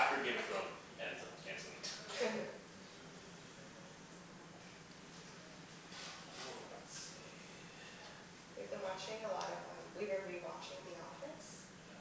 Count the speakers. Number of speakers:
two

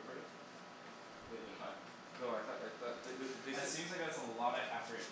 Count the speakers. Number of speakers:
two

